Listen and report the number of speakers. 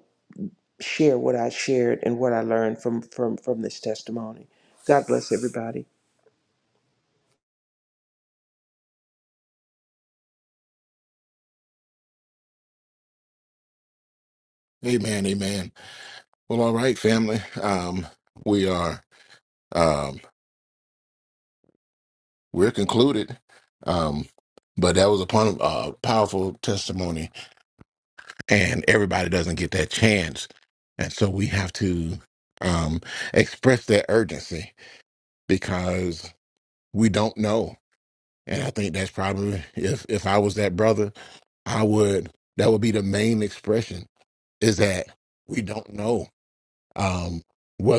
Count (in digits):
2